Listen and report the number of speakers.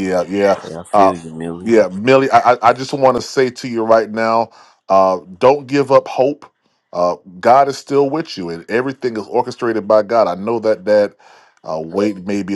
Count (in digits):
2